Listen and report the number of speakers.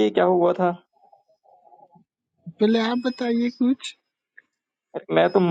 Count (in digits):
2